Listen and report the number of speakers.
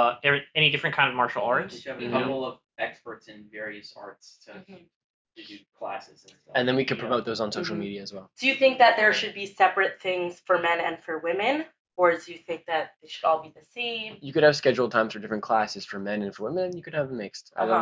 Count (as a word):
four